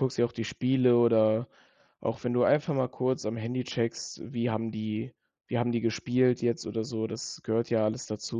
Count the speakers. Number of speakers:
one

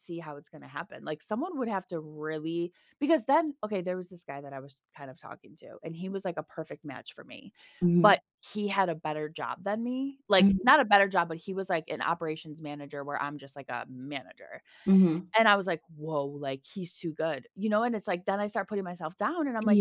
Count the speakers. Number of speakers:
two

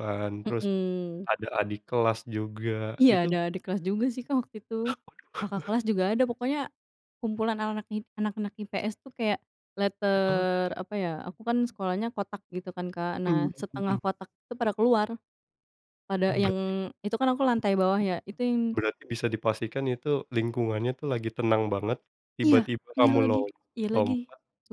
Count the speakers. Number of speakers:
two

